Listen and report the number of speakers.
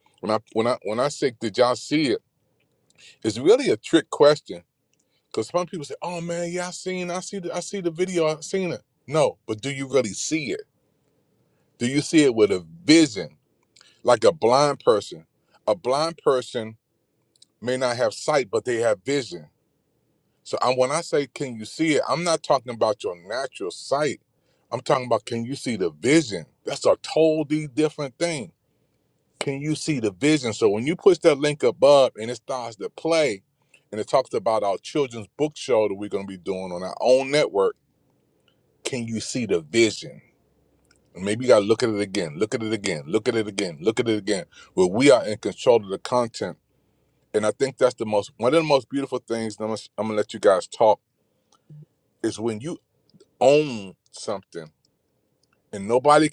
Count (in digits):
1